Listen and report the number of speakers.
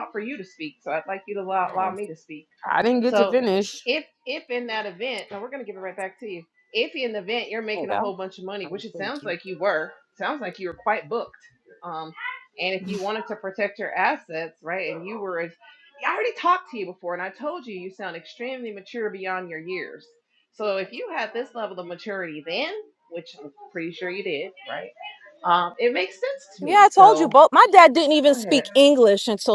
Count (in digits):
3